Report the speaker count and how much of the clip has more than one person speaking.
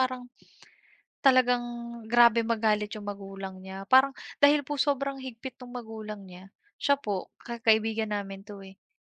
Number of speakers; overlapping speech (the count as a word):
one, no overlap